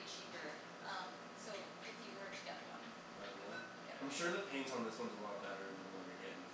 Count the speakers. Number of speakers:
2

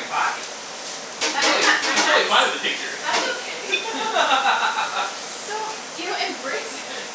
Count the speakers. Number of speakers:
2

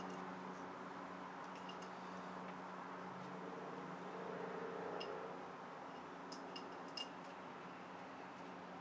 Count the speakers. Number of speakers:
0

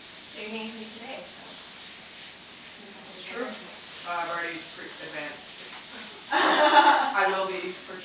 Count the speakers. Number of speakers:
2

